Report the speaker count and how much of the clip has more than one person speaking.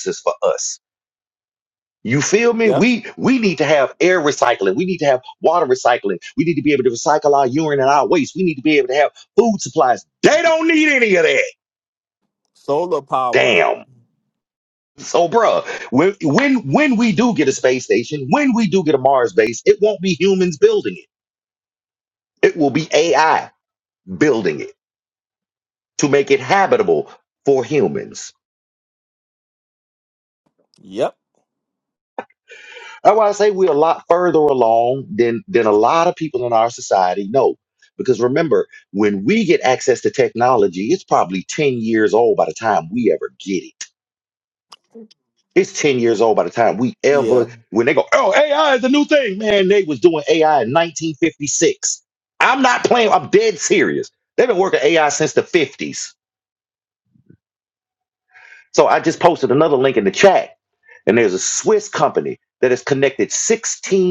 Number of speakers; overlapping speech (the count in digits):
2, about 1%